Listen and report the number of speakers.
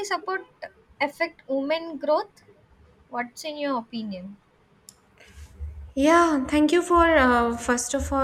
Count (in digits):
2